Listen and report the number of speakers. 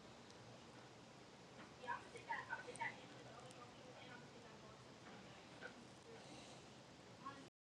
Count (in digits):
0